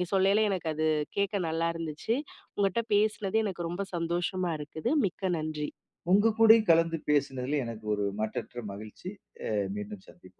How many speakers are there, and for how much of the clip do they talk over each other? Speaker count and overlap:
two, no overlap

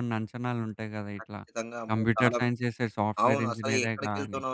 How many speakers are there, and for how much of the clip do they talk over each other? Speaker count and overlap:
two, about 45%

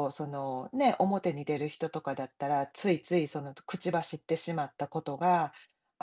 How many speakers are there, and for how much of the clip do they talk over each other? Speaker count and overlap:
one, no overlap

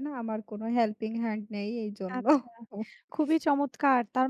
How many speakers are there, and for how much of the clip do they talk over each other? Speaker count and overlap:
two, about 4%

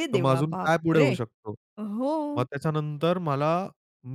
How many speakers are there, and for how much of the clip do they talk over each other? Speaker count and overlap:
two, about 27%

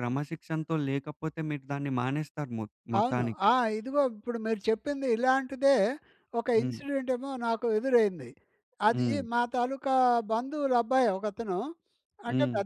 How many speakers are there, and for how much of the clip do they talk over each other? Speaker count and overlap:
two, about 11%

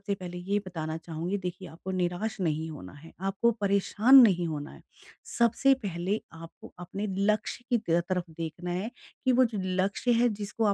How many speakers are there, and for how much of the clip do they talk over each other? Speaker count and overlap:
one, no overlap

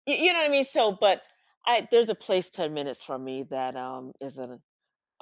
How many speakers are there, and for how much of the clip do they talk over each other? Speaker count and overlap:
one, no overlap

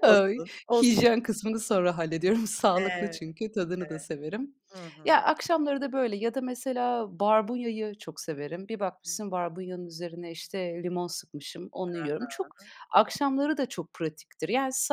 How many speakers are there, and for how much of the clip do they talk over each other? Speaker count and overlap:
two, about 17%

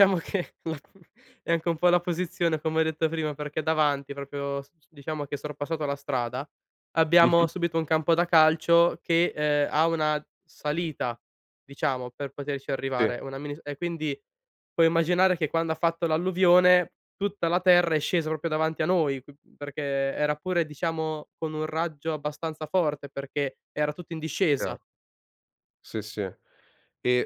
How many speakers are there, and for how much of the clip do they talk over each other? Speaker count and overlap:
two, about 2%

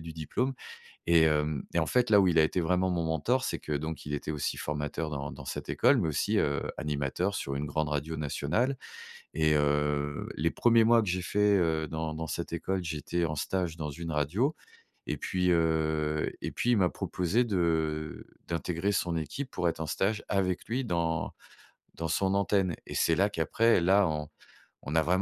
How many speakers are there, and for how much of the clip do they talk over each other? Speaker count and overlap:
one, no overlap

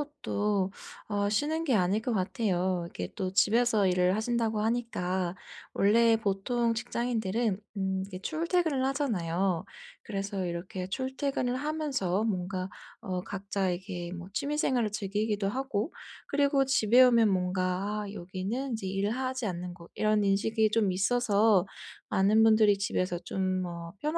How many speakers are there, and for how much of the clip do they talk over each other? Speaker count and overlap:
one, no overlap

